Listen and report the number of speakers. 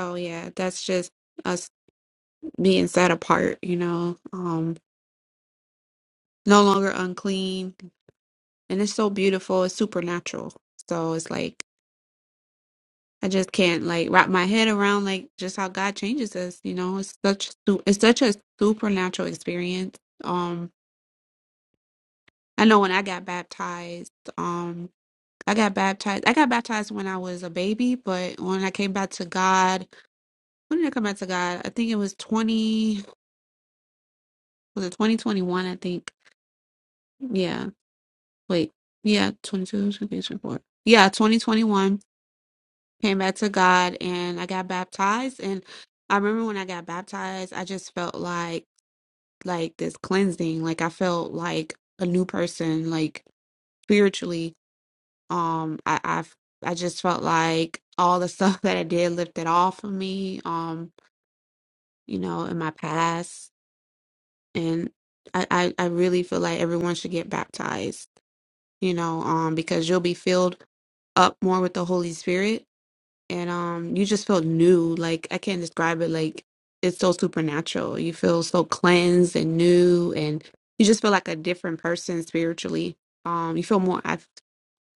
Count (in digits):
1